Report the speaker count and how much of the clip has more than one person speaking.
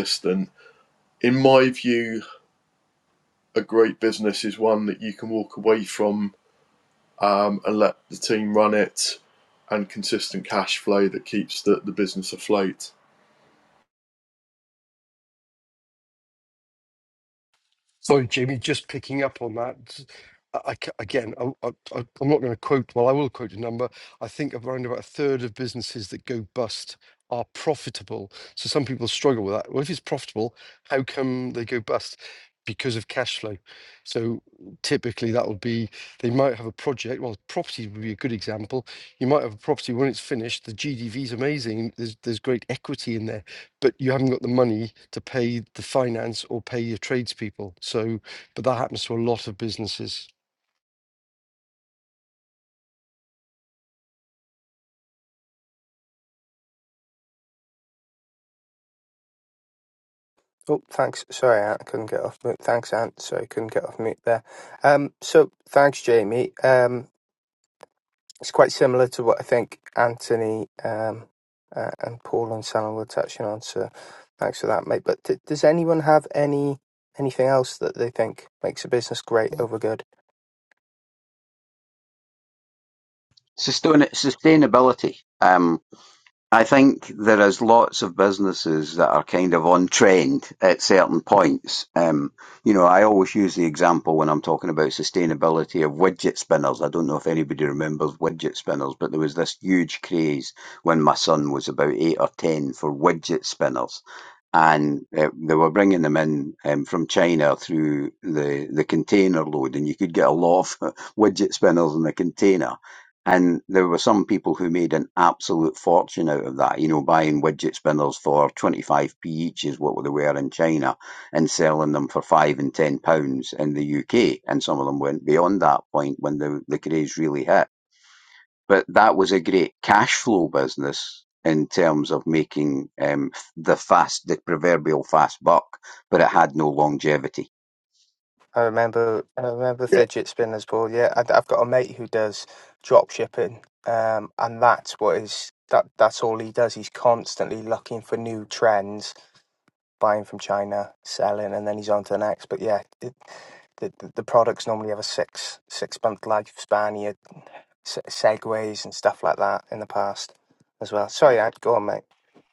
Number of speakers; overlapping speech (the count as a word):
four, under 1%